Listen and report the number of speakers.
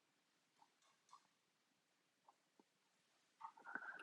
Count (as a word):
zero